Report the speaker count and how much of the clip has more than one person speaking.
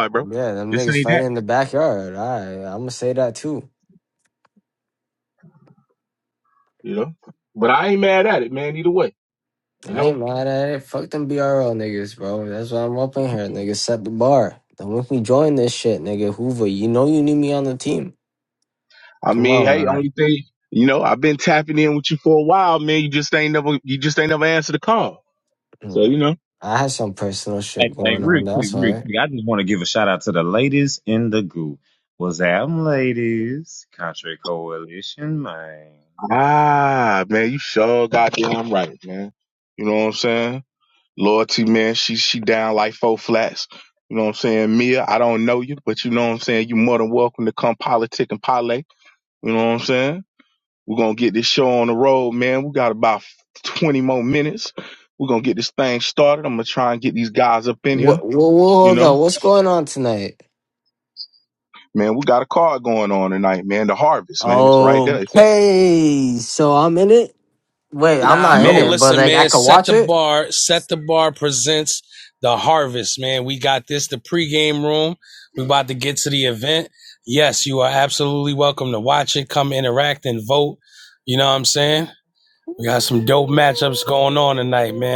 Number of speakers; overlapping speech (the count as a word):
four, about 7%